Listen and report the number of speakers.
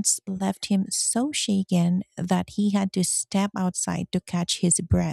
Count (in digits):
1